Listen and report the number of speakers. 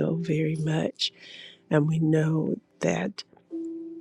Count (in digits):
1